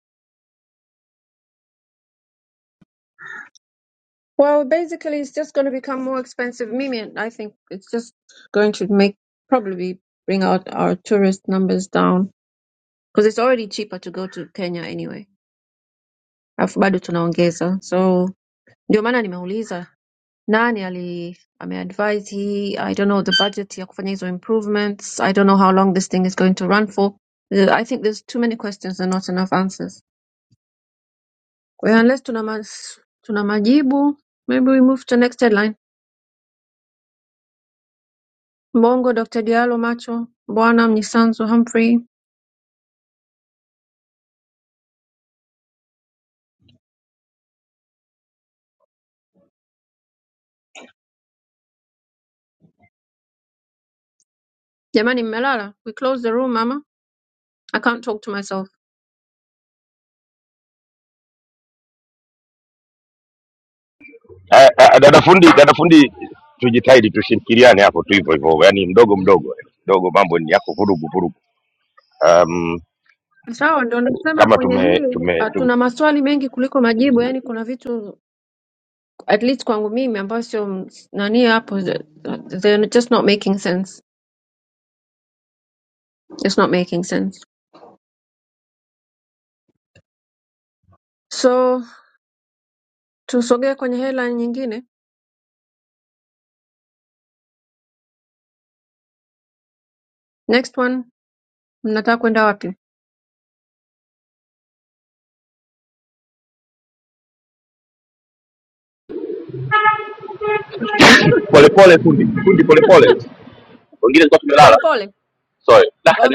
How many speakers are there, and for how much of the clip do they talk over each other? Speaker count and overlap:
3, about 1%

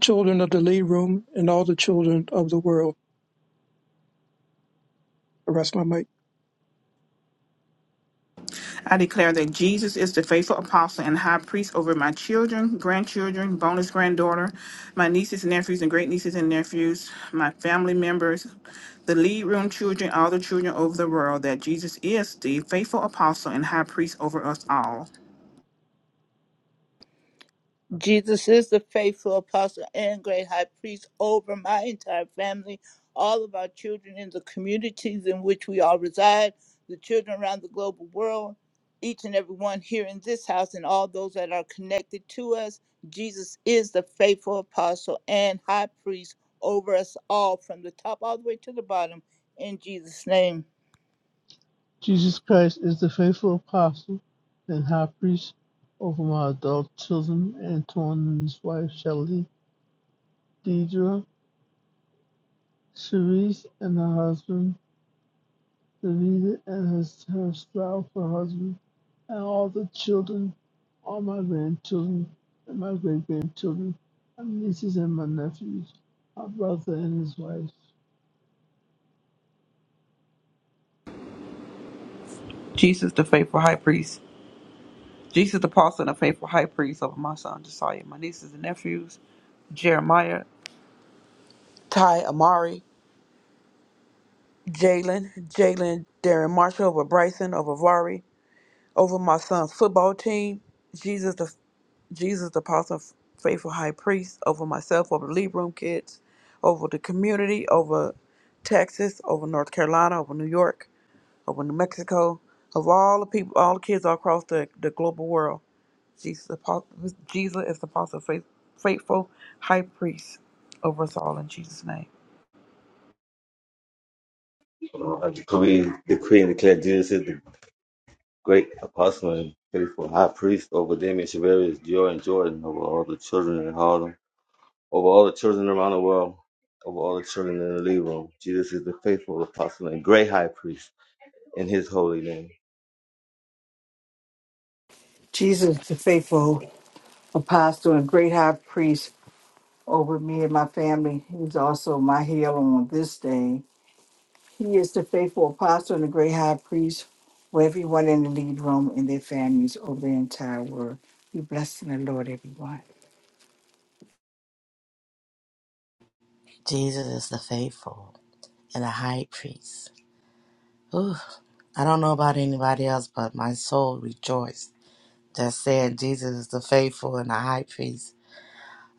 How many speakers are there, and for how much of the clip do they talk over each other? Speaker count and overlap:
8, no overlap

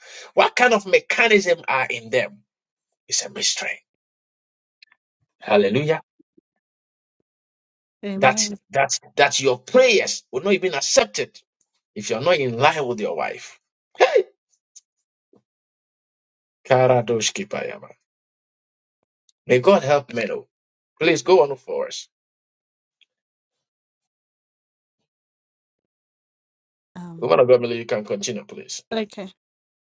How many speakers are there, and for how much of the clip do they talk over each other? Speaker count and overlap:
2, about 1%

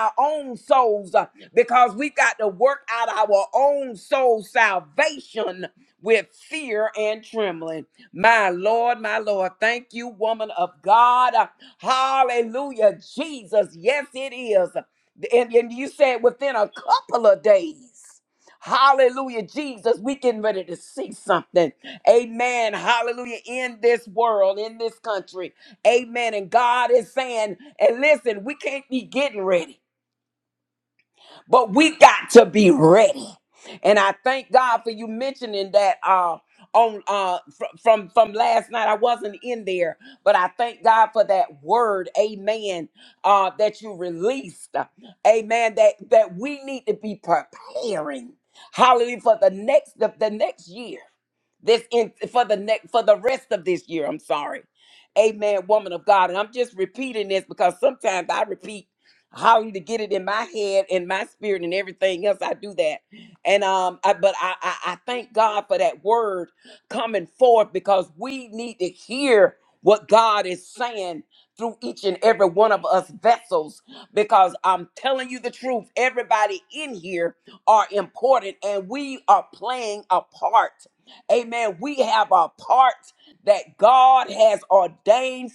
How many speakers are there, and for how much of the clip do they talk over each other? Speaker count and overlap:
1, no overlap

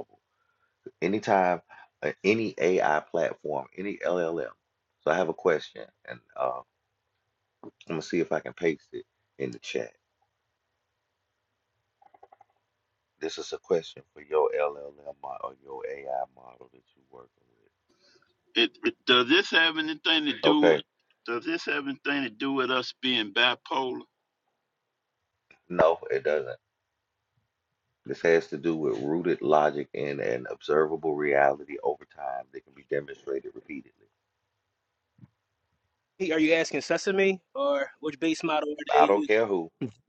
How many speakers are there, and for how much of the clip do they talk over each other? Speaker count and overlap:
3, about 2%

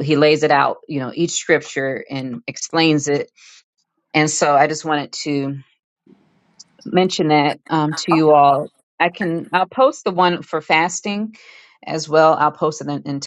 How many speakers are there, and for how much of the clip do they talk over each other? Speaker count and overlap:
1, no overlap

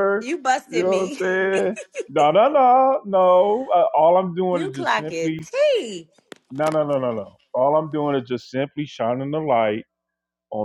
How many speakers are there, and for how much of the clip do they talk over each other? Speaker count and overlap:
2, about 14%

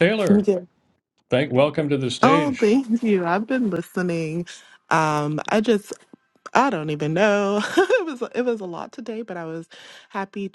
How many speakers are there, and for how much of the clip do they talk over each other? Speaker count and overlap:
2, about 6%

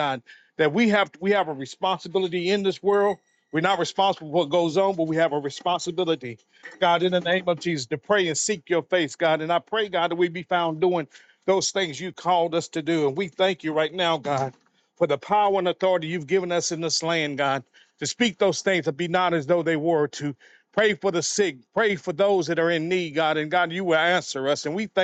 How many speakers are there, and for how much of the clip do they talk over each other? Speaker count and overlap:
1, no overlap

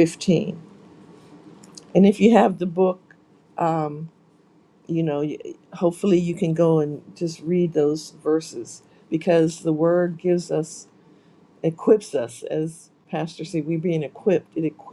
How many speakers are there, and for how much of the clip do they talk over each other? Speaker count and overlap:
1, no overlap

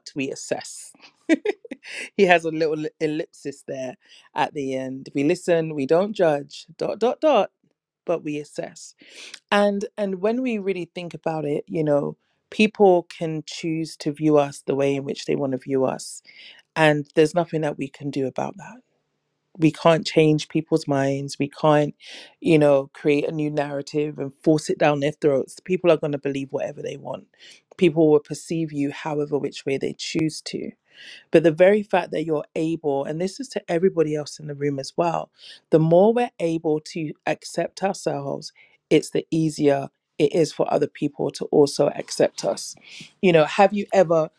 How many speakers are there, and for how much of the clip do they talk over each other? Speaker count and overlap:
1, no overlap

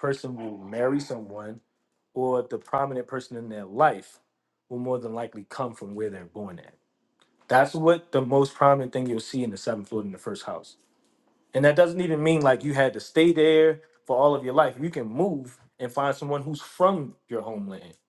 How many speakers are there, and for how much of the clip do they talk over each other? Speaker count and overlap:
1, no overlap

